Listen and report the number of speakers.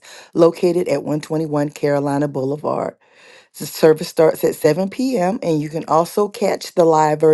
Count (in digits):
1